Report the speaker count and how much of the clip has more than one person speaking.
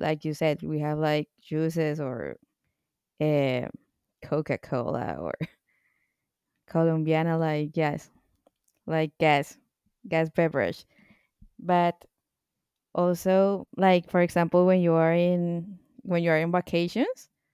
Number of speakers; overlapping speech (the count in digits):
1, no overlap